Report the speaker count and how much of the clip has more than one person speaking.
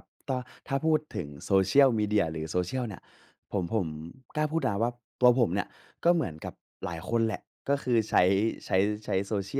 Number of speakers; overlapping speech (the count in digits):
1, no overlap